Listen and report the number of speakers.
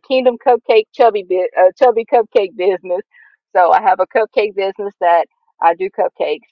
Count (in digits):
1